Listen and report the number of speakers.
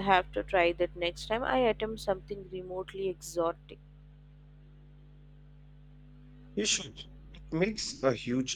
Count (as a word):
two